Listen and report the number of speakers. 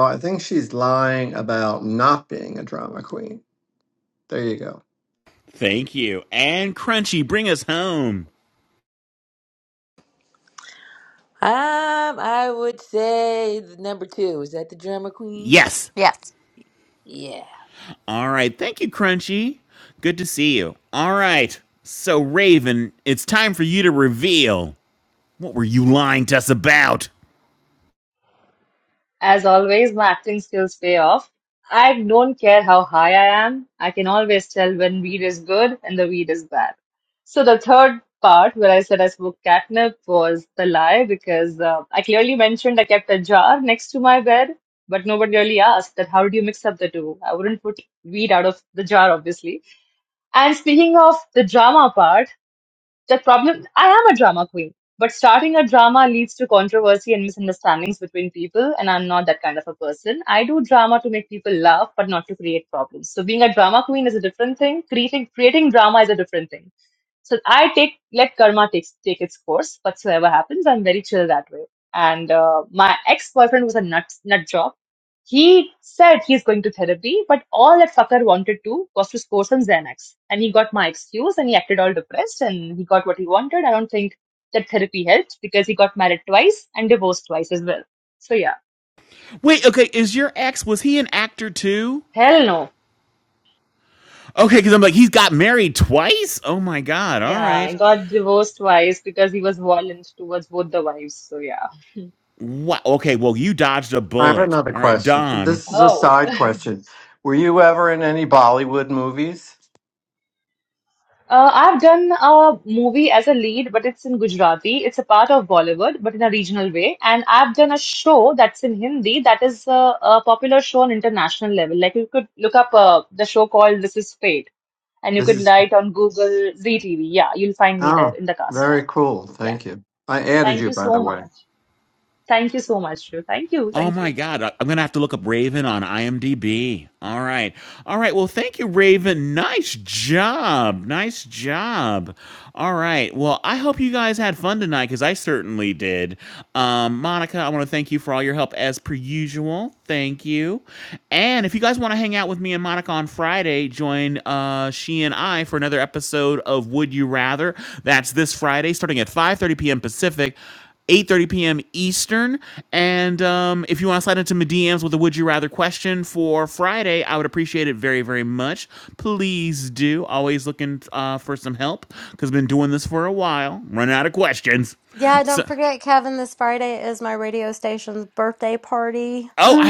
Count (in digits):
5